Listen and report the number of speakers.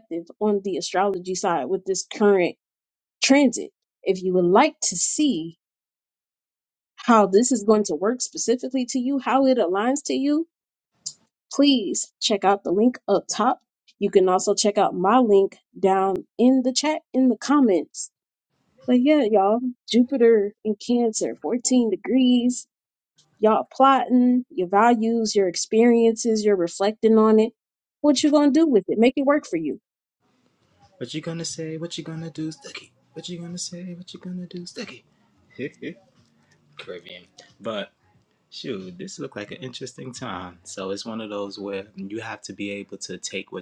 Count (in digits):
2